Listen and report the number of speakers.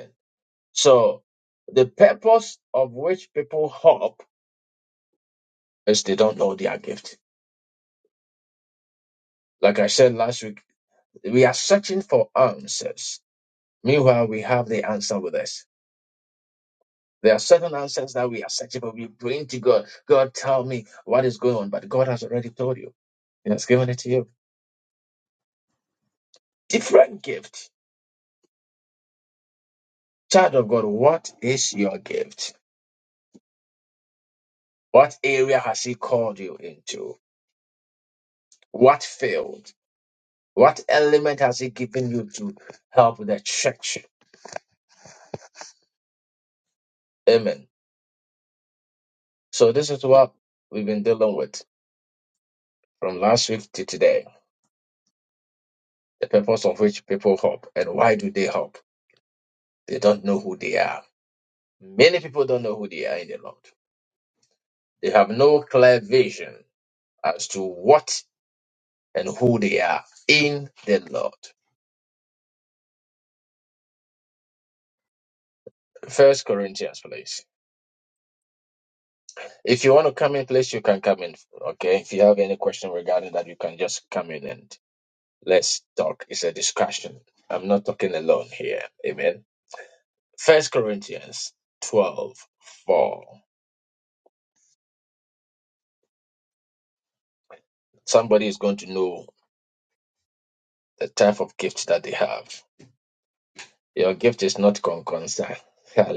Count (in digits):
1